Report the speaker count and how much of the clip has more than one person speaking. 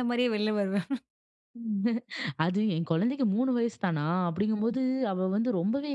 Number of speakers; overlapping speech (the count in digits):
2, about 3%